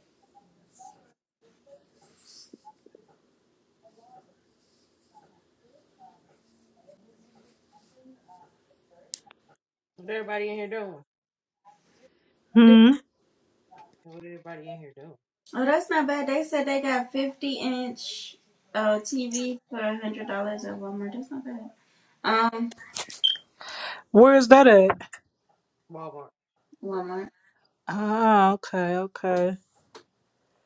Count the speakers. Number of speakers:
3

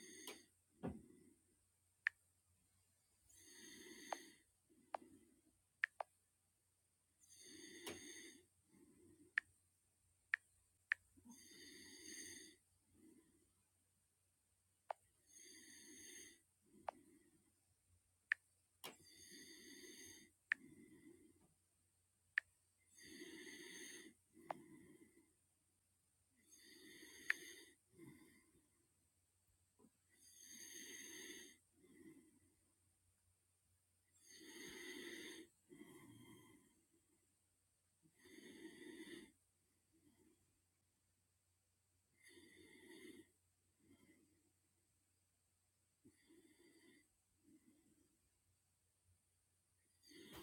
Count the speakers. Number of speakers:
0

